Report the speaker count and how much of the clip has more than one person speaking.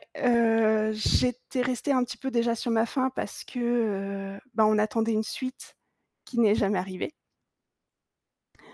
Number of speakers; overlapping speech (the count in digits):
1, no overlap